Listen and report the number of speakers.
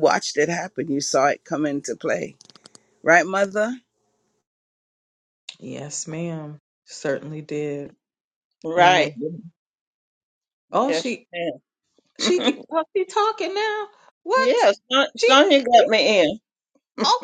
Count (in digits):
3